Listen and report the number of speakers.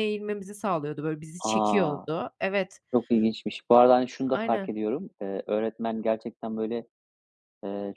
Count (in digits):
2